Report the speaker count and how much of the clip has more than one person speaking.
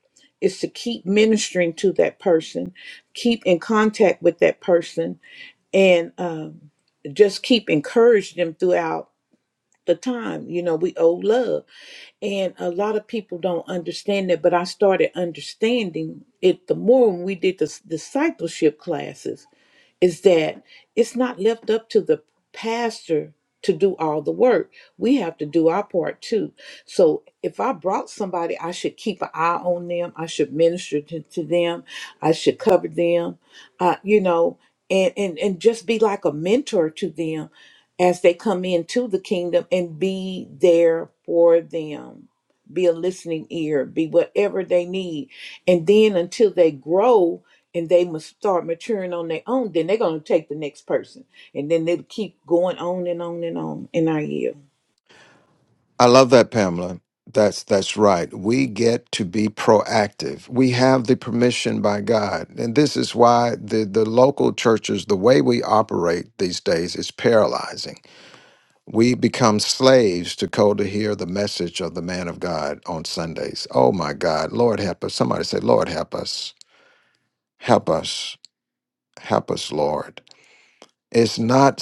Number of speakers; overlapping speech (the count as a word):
two, no overlap